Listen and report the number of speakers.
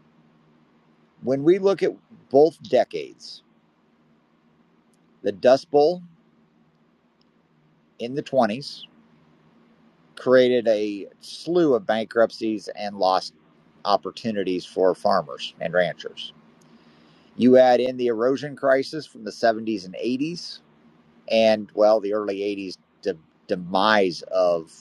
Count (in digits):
1